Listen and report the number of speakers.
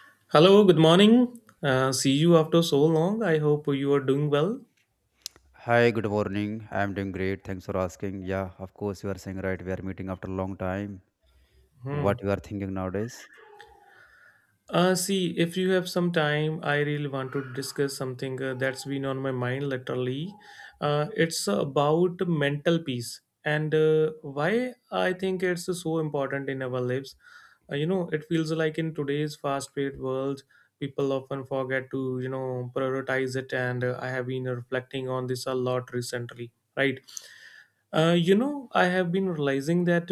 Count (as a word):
two